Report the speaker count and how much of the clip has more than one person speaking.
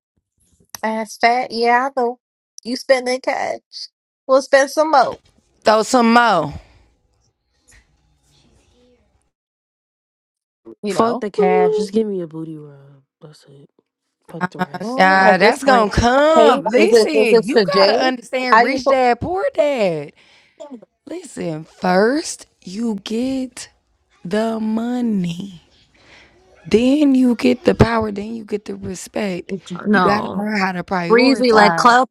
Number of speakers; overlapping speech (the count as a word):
three, about 15%